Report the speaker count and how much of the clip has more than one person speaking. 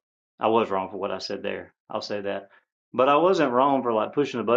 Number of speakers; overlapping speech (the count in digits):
1, no overlap